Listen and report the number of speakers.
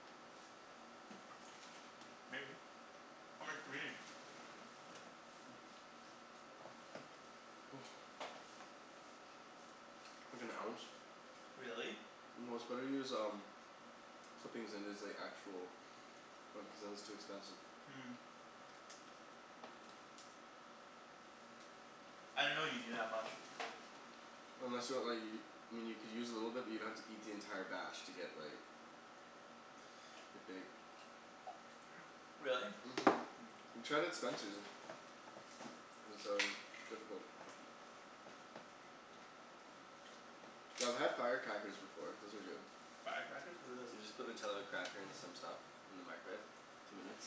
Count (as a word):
two